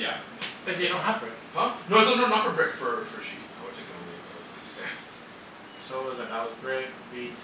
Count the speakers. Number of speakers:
two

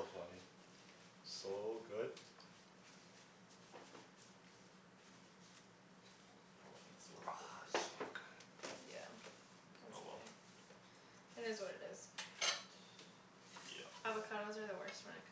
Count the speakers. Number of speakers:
three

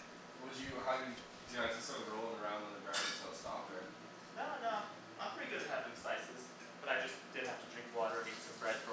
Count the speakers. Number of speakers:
two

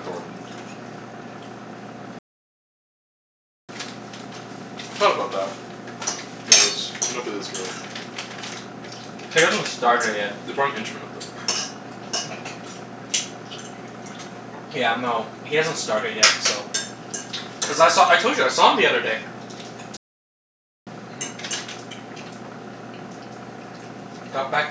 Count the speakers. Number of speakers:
two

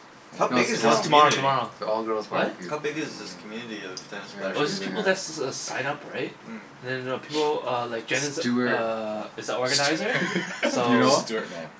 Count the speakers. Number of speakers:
four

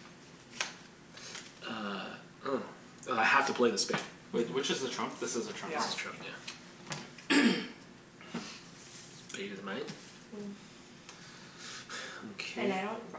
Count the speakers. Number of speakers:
three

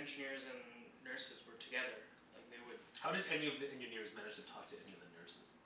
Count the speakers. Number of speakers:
two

